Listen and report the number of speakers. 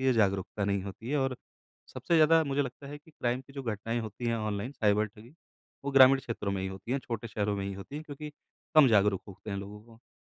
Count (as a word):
one